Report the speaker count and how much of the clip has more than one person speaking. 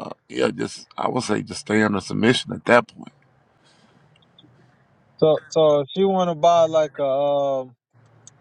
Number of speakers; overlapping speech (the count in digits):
2, no overlap